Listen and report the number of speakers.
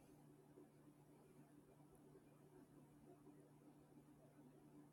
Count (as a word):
zero